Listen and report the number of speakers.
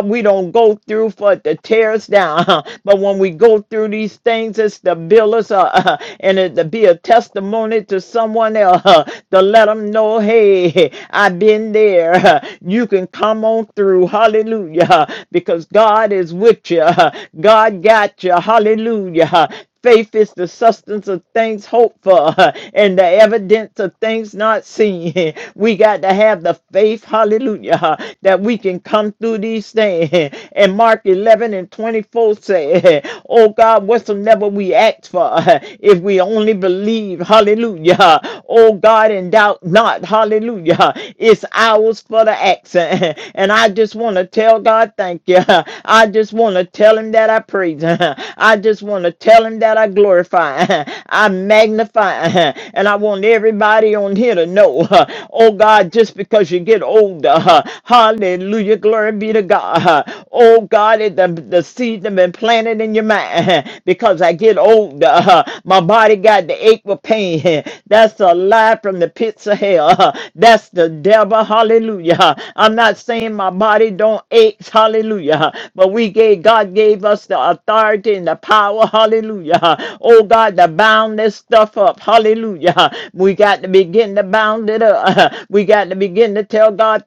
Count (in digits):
1